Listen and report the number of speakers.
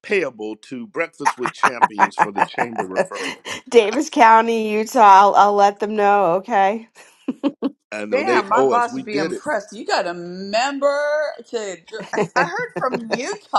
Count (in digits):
3